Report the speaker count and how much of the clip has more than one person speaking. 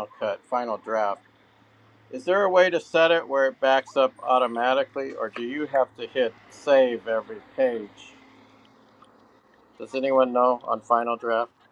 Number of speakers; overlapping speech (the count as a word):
one, no overlap